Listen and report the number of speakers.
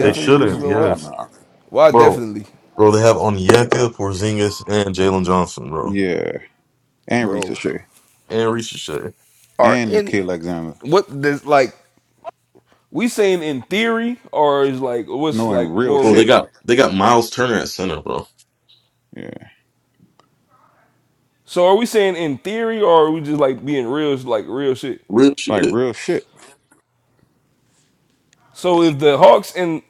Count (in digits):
3